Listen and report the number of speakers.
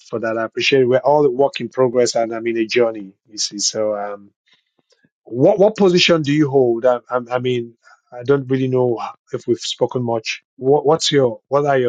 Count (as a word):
one